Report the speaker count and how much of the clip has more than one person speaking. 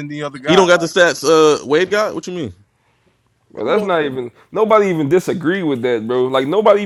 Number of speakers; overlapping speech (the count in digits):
3, about 12%